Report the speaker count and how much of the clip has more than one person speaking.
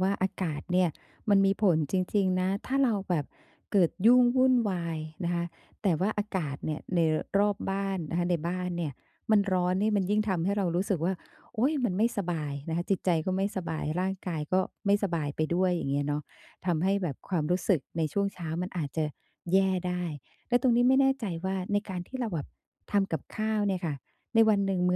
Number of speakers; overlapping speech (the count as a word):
one, no overlap